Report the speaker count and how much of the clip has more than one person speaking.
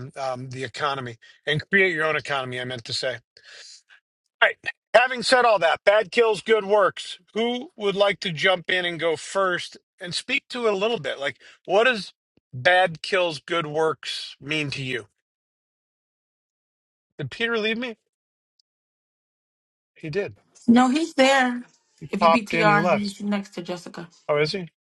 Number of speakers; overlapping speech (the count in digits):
2, about 3%